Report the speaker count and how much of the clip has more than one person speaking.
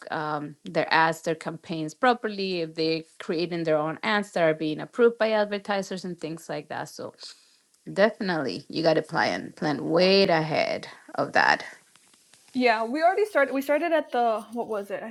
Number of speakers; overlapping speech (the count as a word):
two, no overlap